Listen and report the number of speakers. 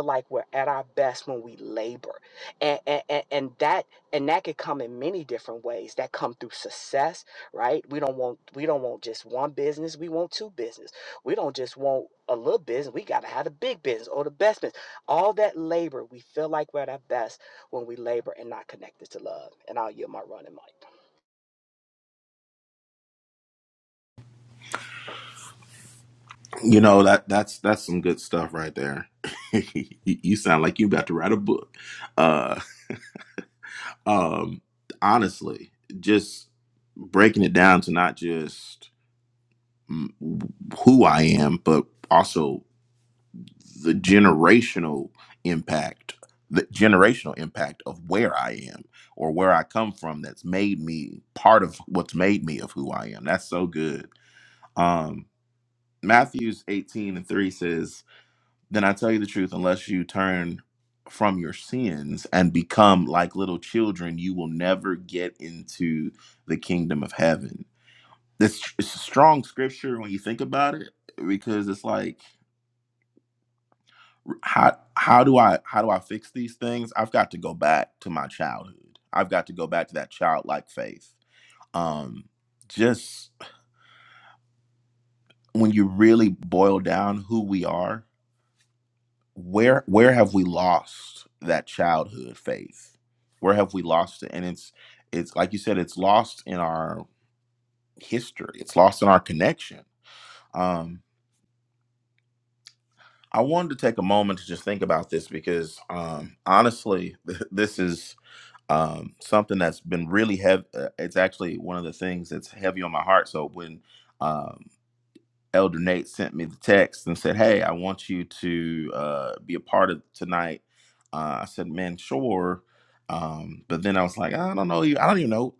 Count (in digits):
2